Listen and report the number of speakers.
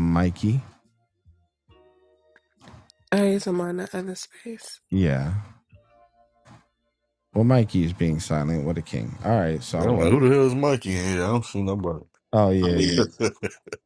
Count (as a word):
three